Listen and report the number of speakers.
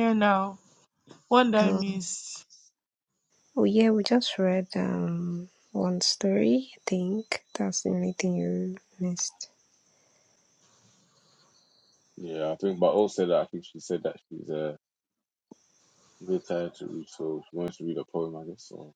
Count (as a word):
three